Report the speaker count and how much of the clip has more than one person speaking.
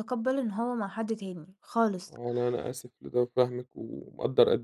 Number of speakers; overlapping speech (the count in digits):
2, about 1%